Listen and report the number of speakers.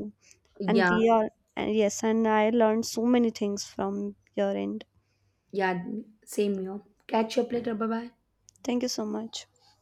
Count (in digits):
2